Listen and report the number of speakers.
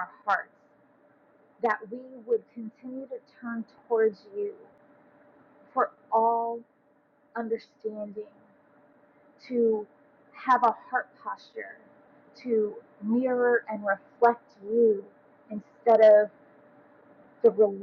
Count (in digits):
1